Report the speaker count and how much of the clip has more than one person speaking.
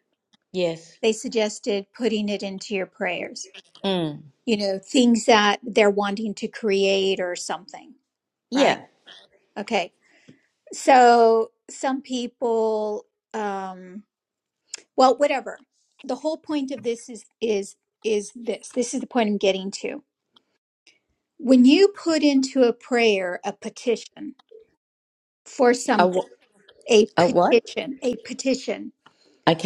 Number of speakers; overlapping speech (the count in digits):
2, about 3%